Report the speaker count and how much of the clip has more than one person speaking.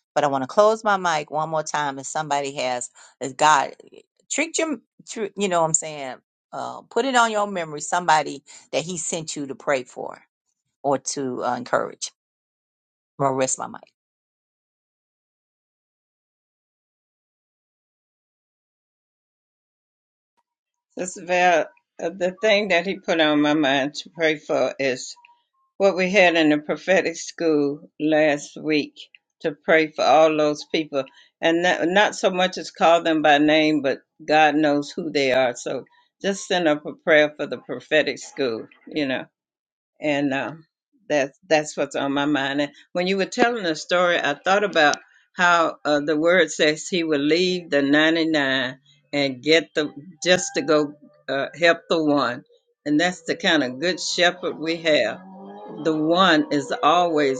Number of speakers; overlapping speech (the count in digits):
2, no overlap